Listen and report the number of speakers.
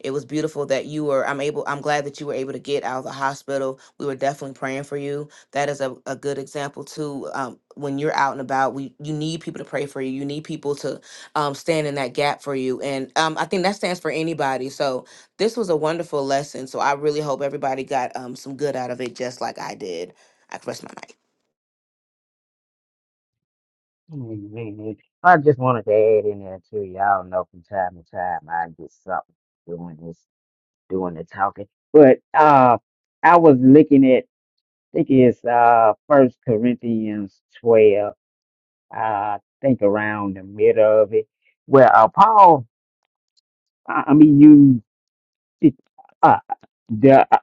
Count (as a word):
two